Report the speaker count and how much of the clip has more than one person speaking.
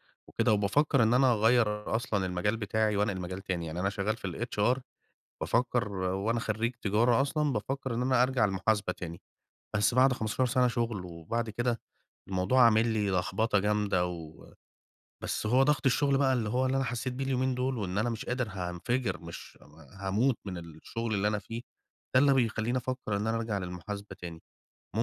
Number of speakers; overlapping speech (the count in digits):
1, no overlap